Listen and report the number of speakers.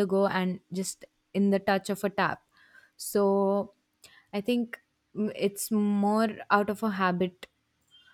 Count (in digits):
1